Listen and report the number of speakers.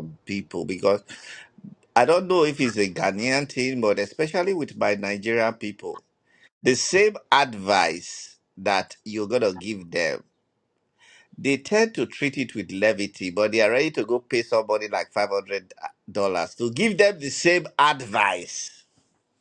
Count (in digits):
1